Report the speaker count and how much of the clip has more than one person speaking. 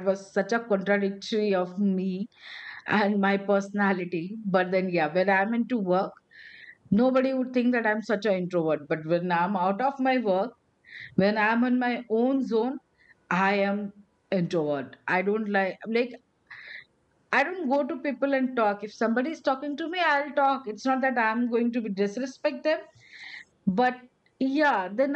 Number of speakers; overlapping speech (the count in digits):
1, no overlap